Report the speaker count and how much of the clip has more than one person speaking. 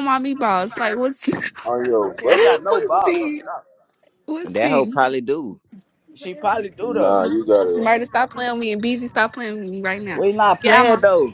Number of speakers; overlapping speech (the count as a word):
four, about 23%